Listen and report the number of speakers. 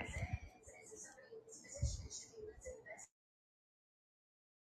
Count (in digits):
0